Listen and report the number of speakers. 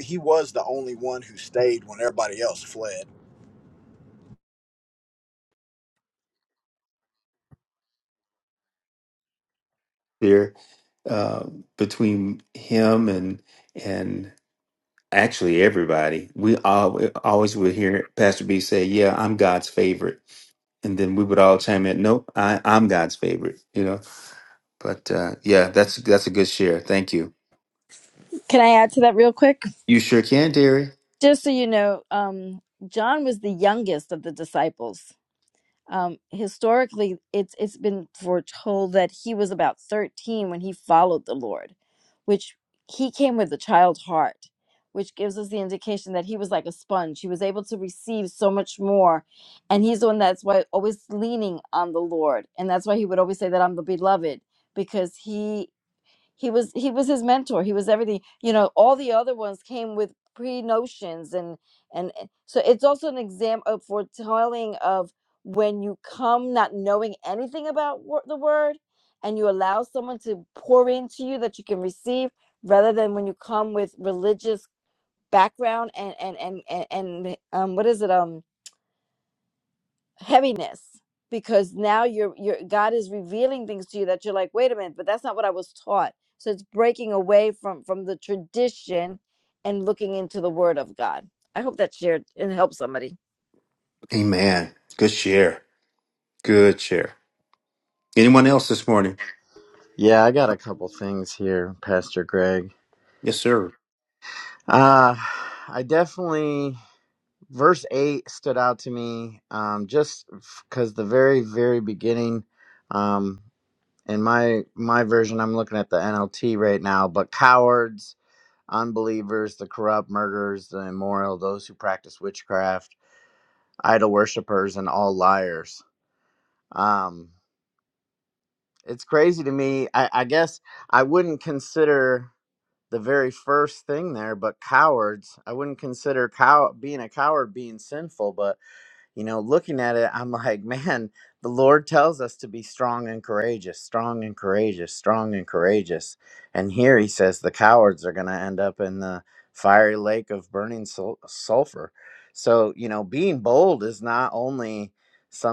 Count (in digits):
4